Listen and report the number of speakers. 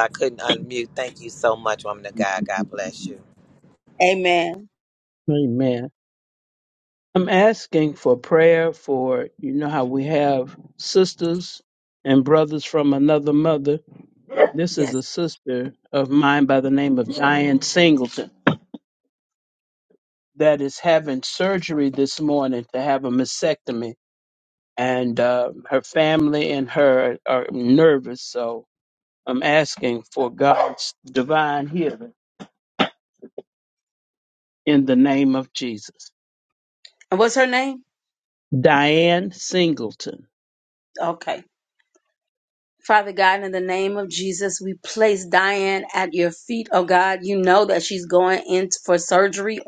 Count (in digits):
3